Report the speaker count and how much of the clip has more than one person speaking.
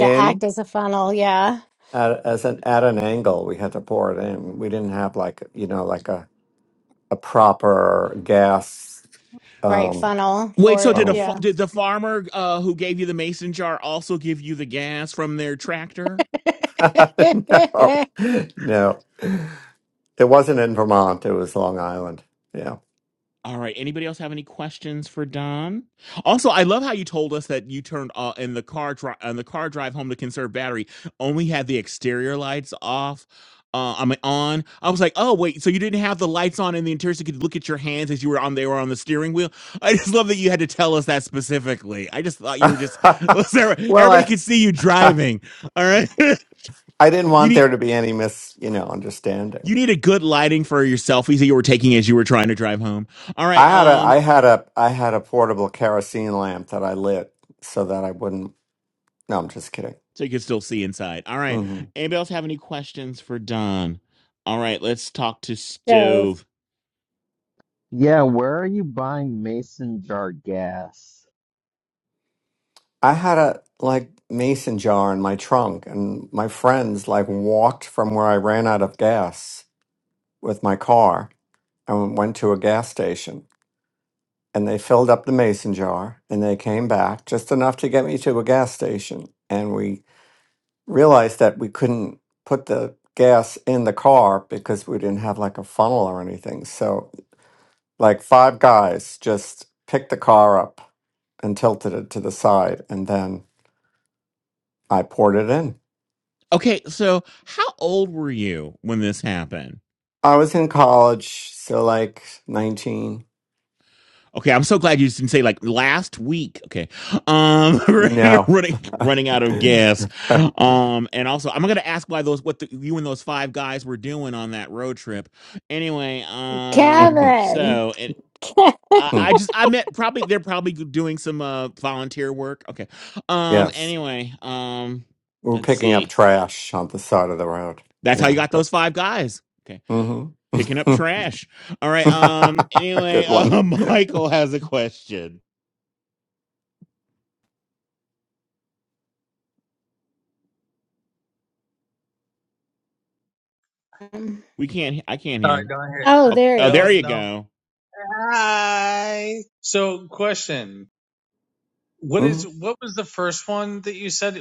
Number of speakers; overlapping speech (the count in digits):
5, about 4%